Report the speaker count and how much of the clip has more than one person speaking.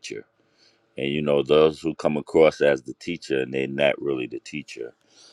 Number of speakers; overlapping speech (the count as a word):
one, no overlap